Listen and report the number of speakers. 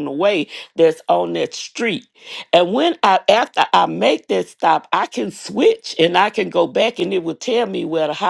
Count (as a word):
one